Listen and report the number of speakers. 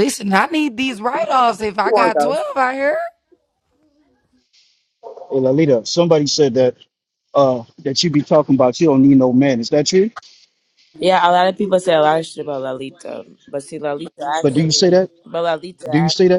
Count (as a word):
three